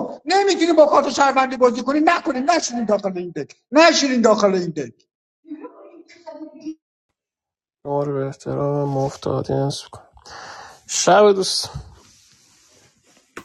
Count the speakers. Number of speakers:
two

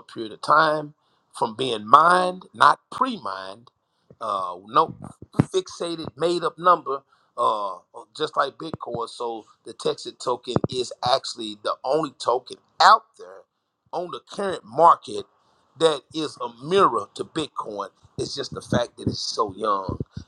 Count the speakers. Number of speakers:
one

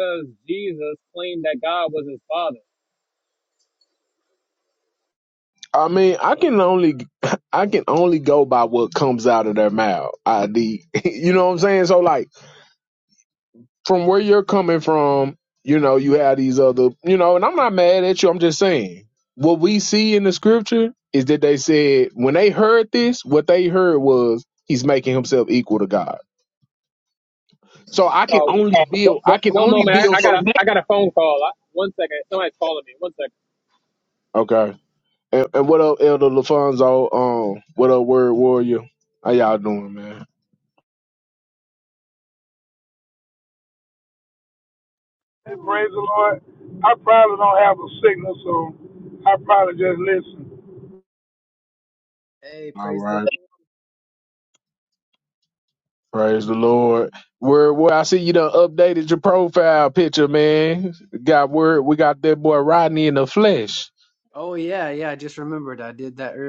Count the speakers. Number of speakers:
four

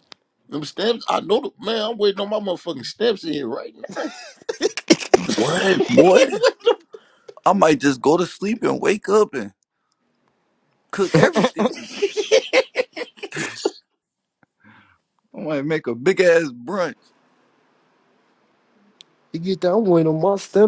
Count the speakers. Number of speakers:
three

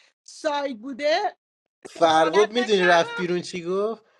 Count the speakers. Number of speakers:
two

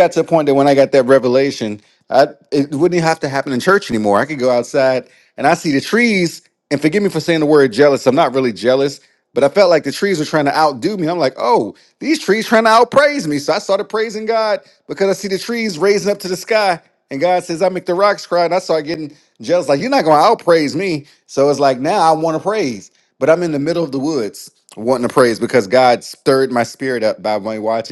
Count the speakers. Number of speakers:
one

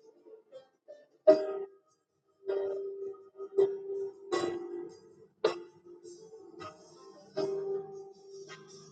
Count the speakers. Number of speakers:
zero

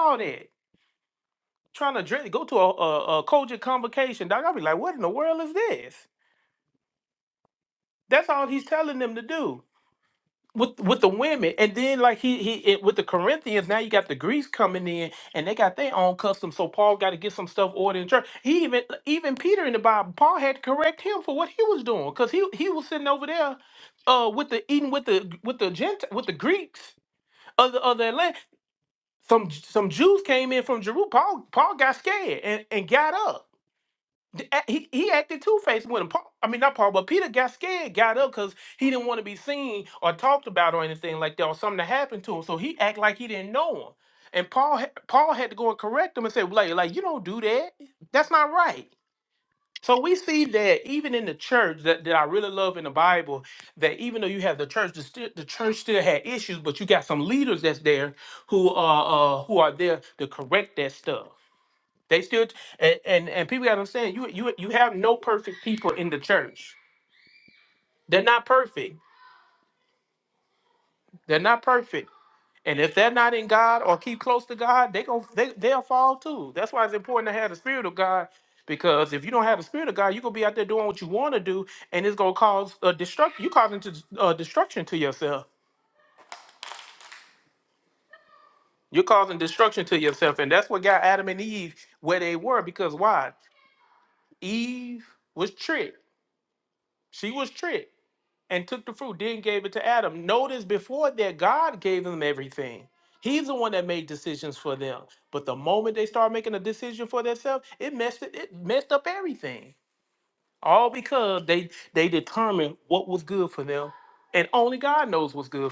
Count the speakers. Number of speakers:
one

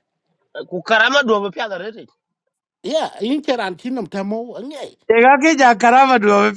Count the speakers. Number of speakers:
three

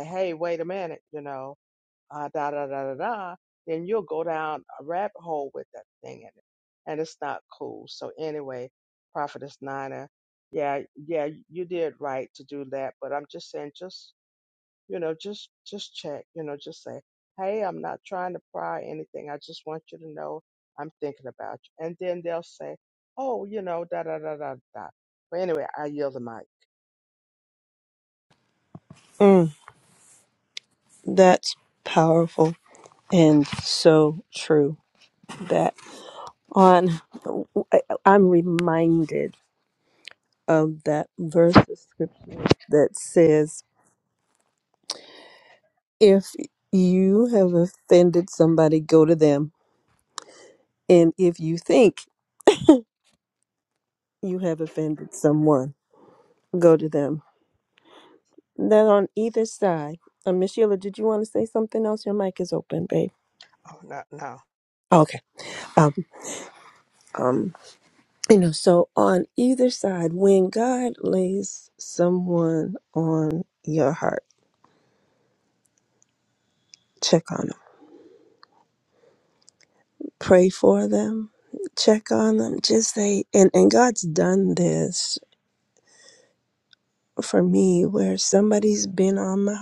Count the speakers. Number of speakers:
two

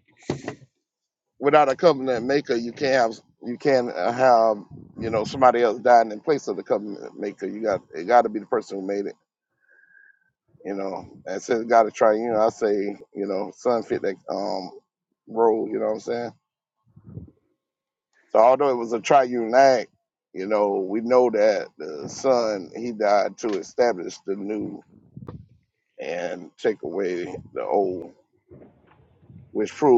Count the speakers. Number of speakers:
one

